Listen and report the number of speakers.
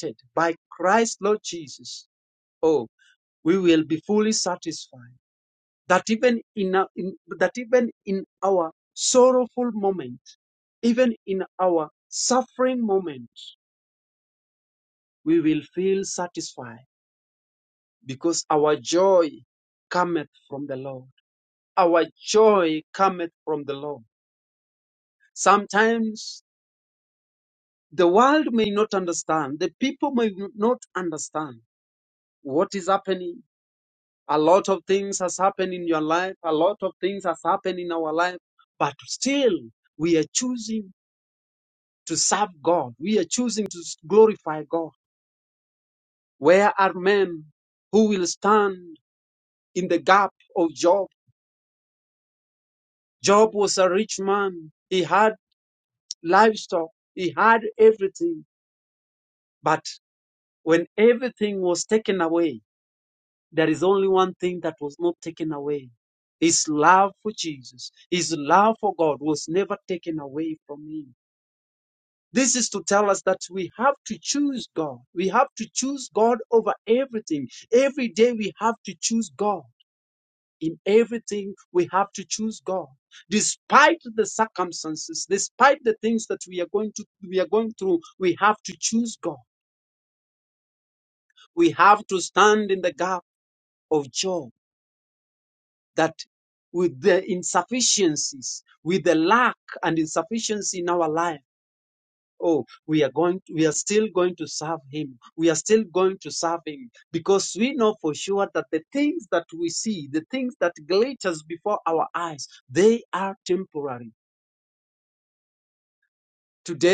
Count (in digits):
1